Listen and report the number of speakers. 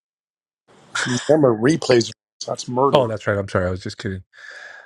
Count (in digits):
2